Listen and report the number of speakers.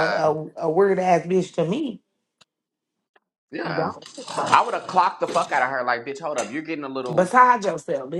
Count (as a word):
two